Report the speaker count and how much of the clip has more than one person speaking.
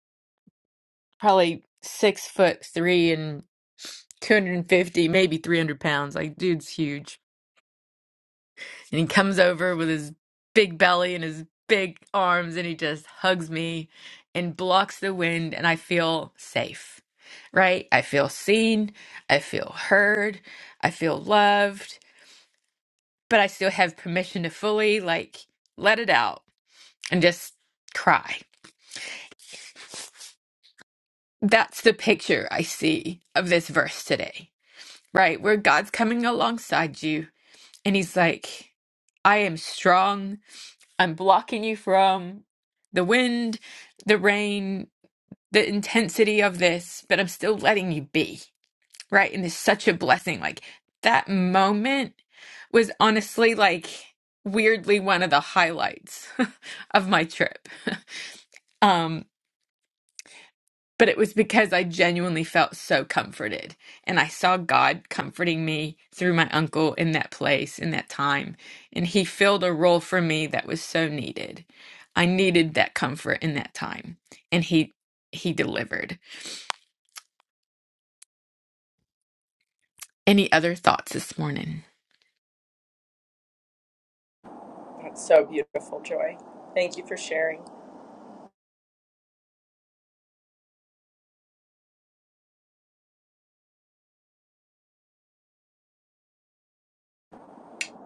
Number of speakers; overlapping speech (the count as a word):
two, no overlap